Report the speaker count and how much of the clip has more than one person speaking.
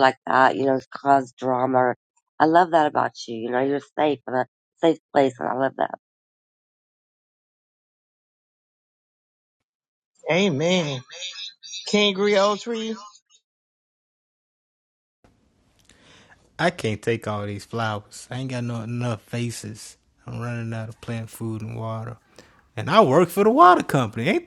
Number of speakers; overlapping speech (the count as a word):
three, no overlap